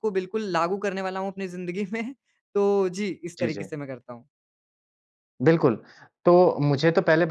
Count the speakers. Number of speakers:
2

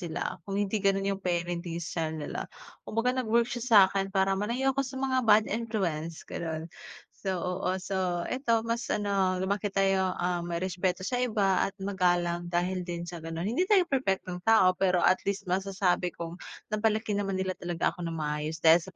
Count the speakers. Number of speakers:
1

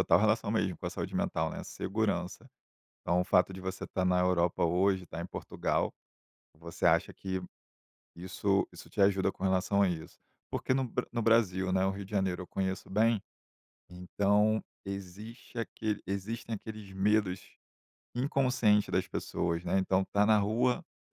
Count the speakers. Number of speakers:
1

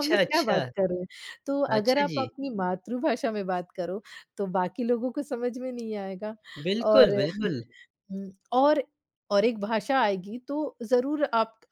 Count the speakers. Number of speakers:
2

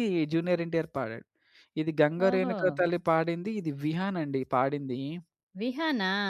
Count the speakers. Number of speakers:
2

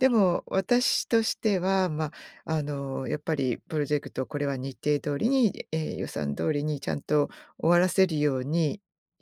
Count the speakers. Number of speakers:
1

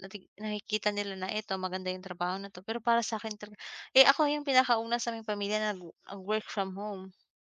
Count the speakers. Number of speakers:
1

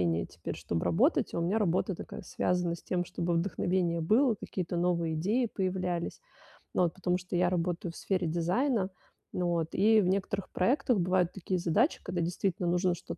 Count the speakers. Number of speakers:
1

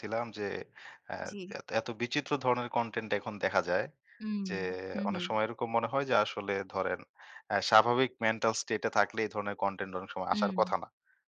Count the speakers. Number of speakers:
2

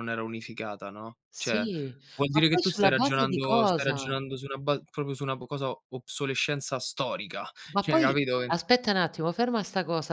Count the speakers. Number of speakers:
2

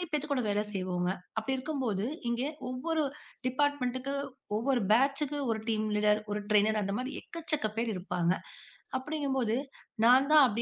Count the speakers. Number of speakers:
1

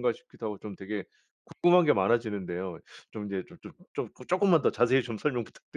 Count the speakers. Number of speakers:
1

